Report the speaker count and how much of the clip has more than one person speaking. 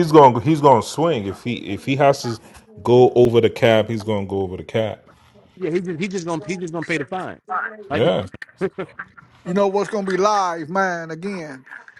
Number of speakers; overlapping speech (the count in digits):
3, about 2%